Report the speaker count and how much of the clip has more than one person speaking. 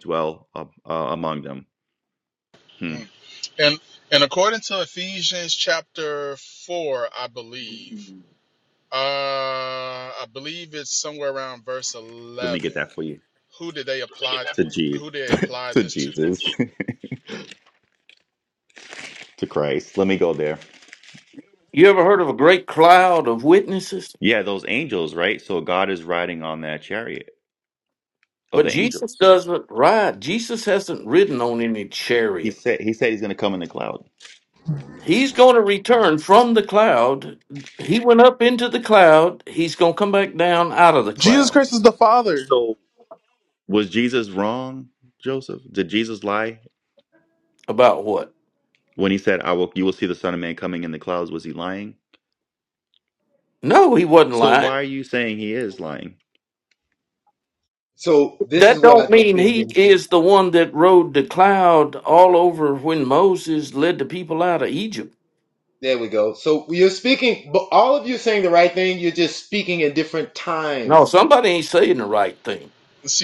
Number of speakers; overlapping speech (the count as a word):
five, about 5%